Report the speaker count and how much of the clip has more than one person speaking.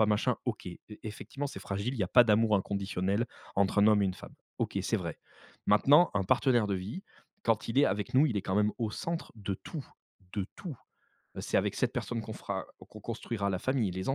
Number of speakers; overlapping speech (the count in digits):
1, no overlap